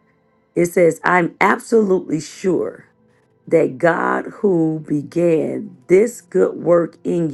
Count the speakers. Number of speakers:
one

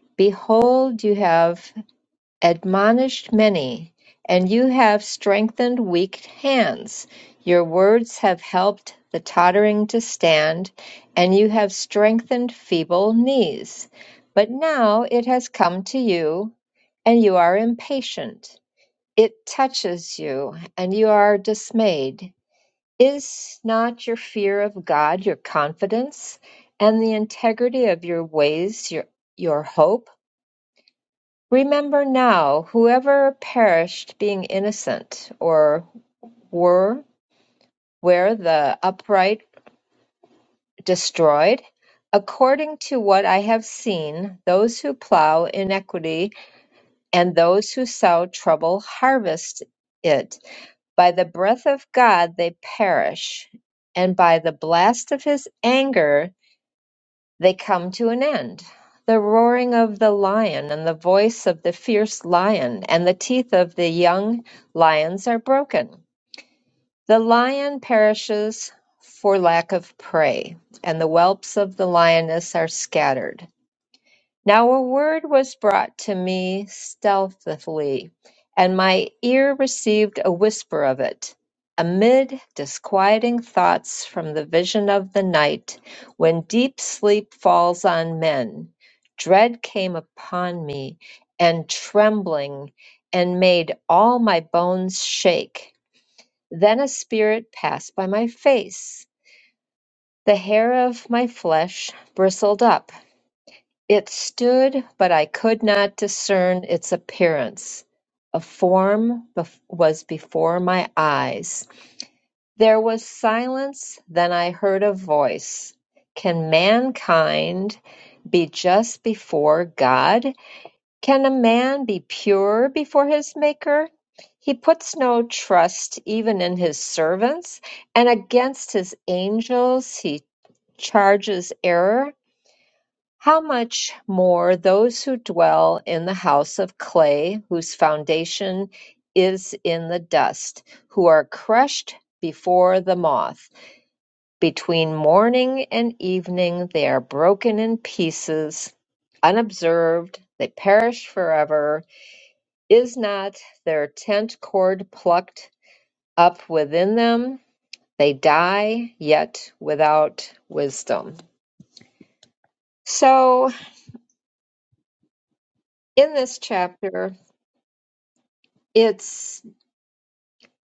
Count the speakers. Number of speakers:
one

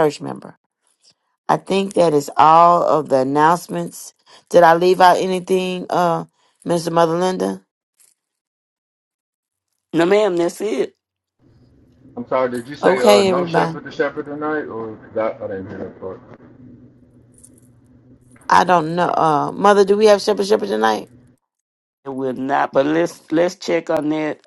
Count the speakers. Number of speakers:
three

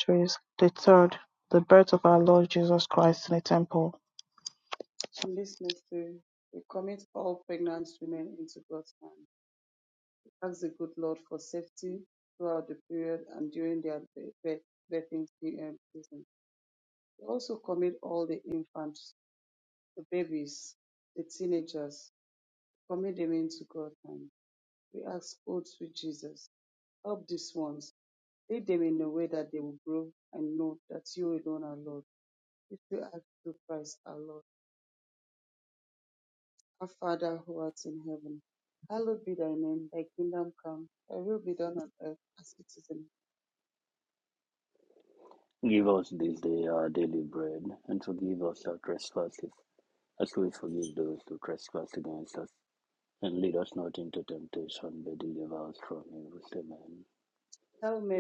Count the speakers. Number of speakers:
three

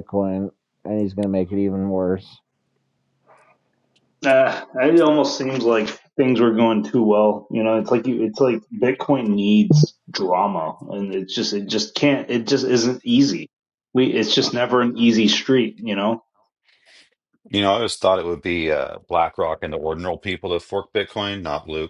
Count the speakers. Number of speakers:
three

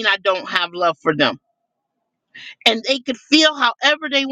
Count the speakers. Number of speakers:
one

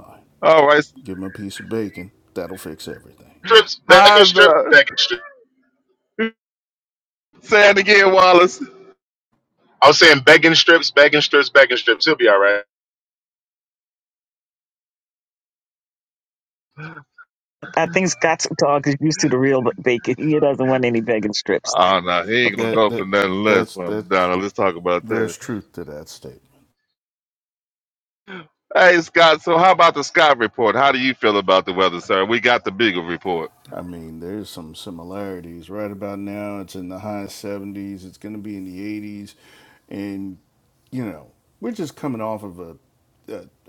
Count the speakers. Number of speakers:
four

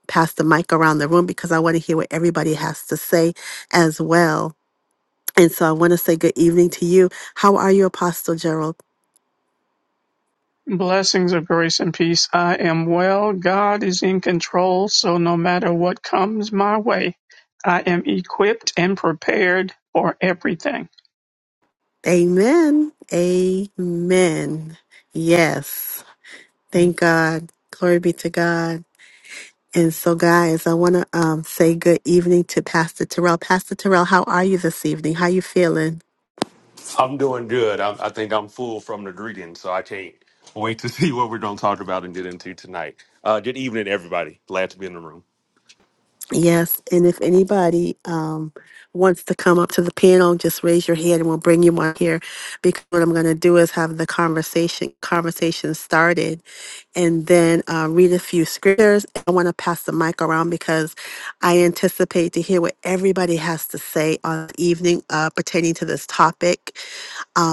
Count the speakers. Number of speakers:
three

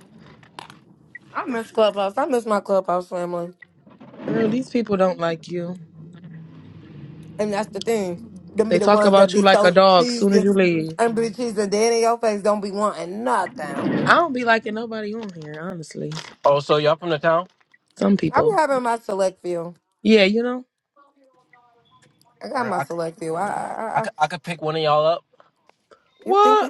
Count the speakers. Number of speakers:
three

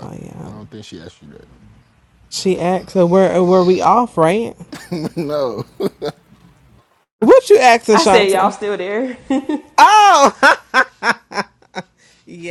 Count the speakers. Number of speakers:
three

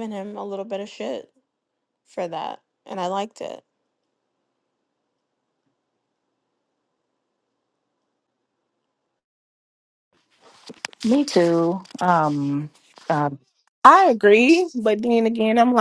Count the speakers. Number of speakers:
three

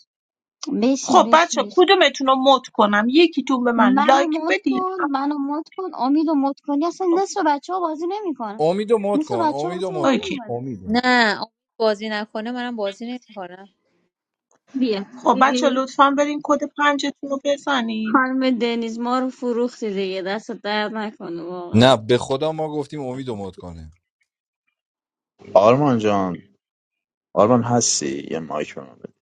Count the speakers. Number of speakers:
five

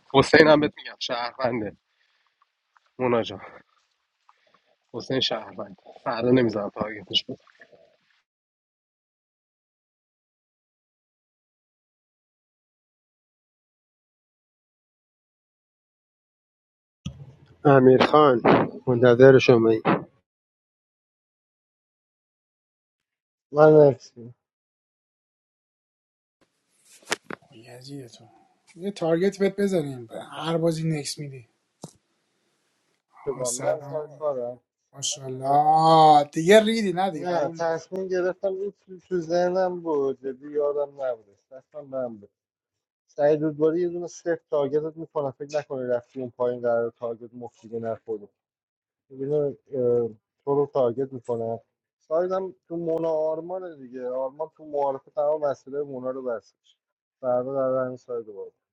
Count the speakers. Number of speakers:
four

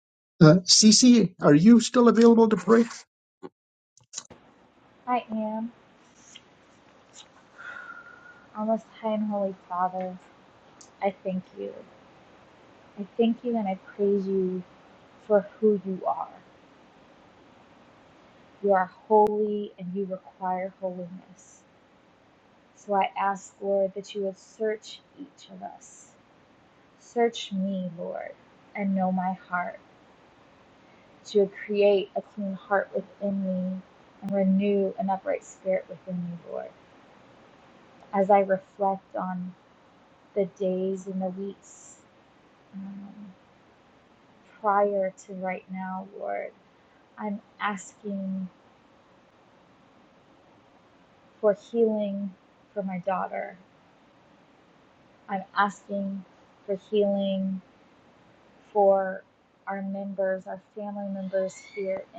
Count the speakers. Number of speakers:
two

